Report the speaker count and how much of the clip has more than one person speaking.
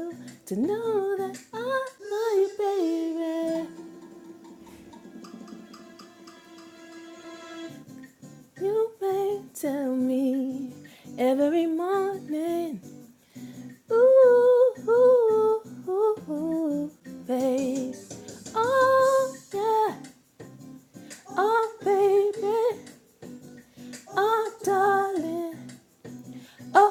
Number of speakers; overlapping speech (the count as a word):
one, no overlap